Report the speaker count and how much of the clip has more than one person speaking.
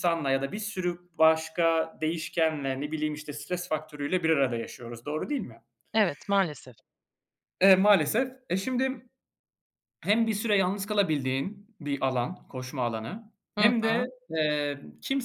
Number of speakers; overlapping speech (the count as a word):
two, about 3%